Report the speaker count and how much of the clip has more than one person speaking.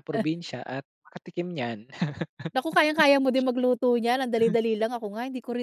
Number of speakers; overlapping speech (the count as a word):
two, about 2%